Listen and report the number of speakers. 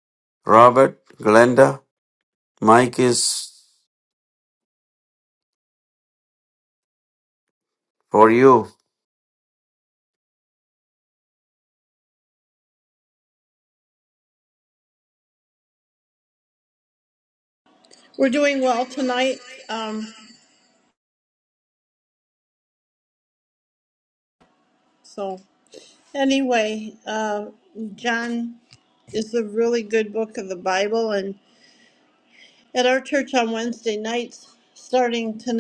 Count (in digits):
2